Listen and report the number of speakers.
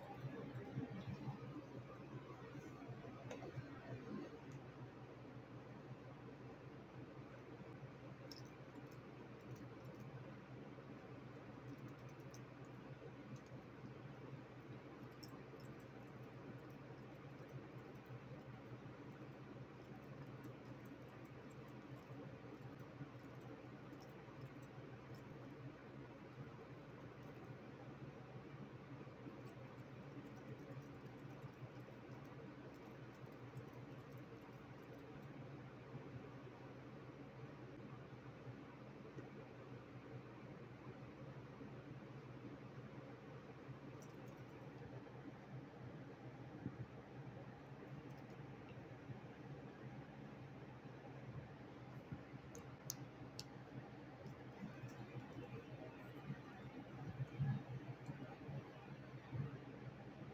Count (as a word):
zero